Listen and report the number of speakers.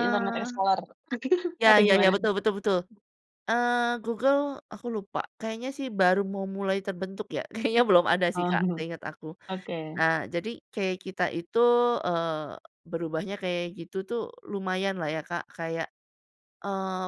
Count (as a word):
two